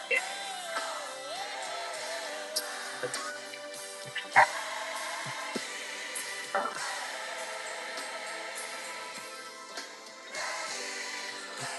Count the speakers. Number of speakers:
0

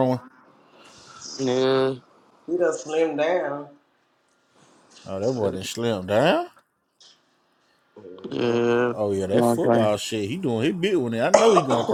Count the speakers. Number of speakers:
3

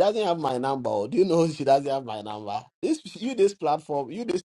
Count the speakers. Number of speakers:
1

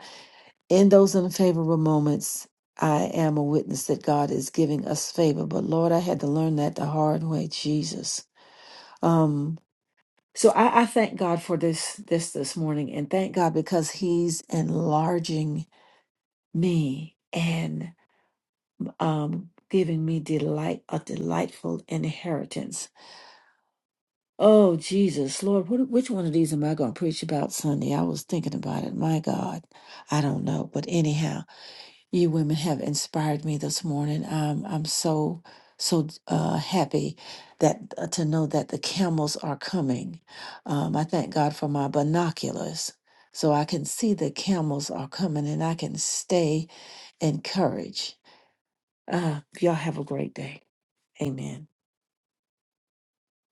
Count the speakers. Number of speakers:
1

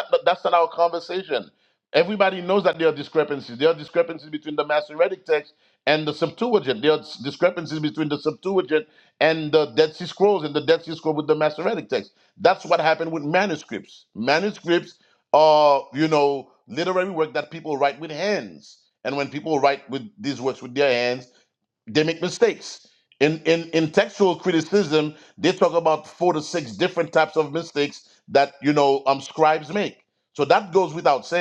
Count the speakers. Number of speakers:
1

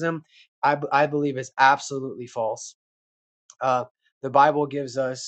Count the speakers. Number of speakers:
1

